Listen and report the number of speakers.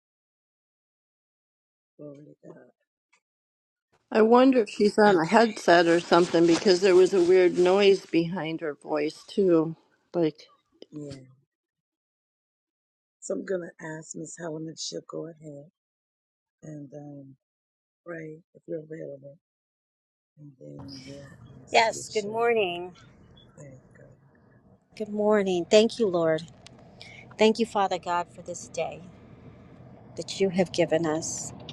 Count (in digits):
3